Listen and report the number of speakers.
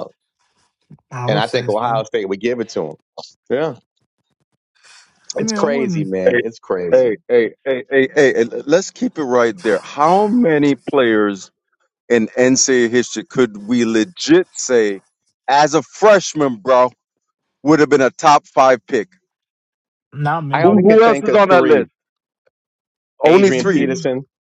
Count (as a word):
three